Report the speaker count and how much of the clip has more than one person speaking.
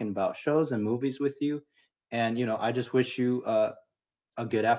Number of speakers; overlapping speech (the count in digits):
1, no overlap